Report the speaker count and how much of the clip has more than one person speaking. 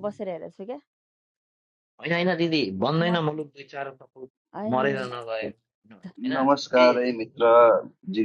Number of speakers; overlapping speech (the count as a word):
three, about 11%